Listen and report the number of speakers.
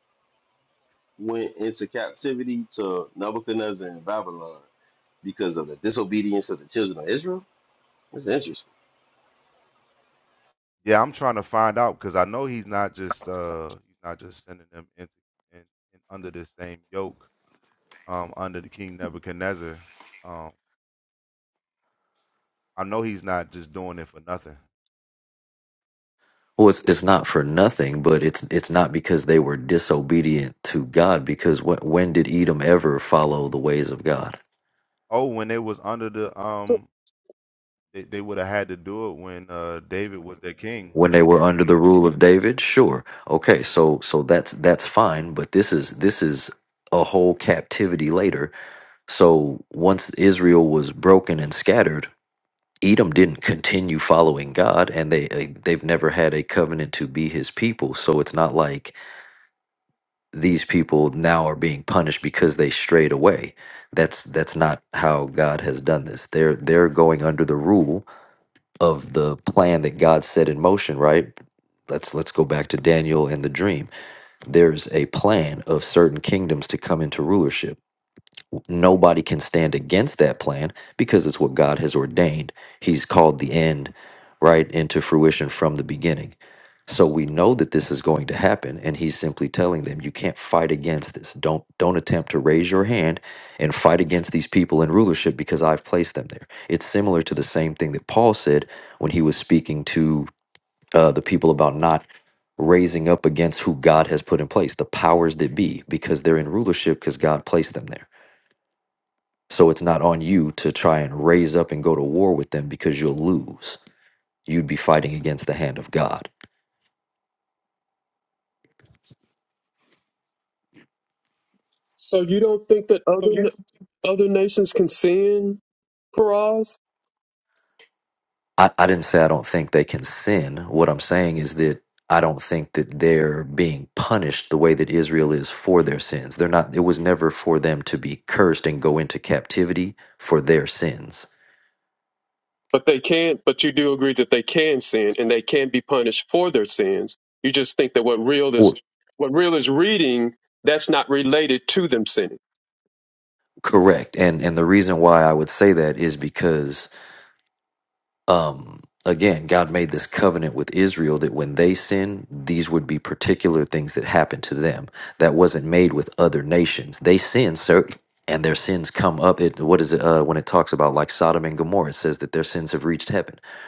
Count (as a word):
four